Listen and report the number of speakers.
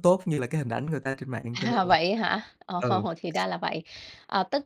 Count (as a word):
two